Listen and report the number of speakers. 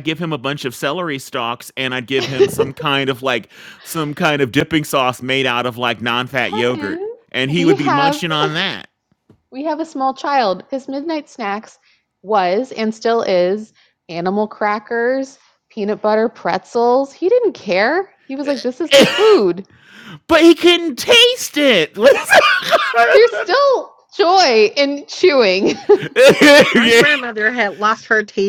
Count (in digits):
3